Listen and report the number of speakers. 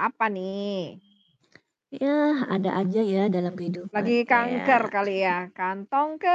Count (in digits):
2